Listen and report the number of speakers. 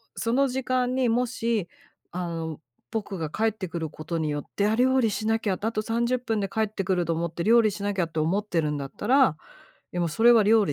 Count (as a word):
one